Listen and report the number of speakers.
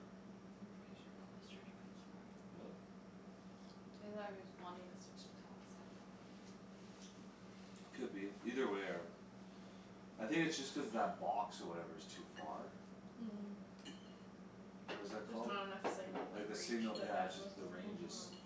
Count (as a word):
three